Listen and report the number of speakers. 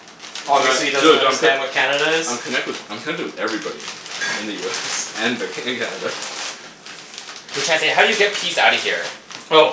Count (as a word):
three